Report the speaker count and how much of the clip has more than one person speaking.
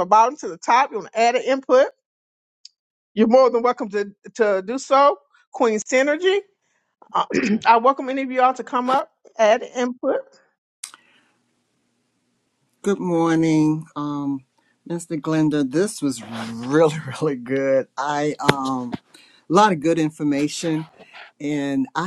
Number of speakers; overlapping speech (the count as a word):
two, no overlap